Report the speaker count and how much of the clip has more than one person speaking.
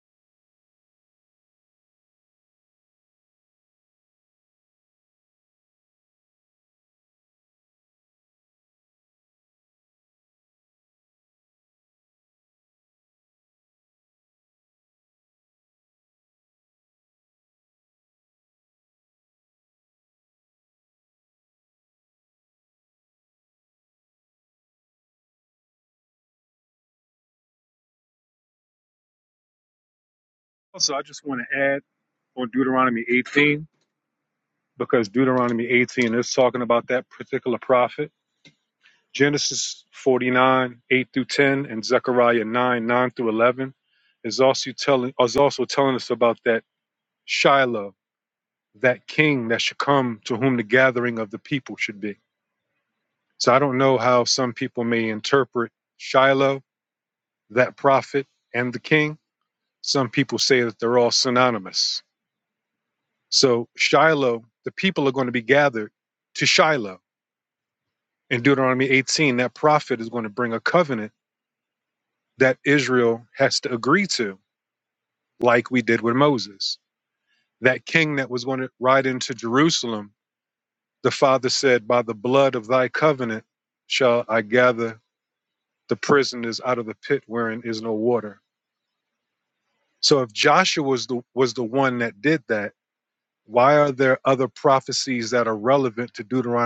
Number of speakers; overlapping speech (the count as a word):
one, no overlap